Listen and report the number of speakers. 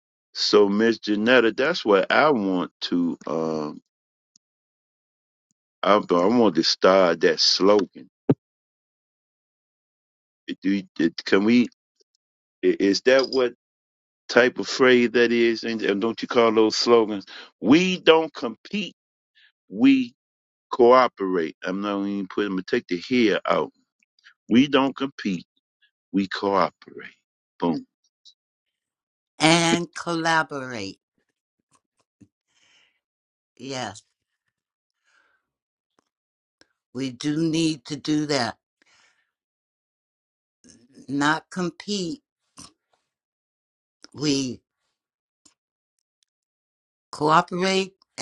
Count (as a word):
two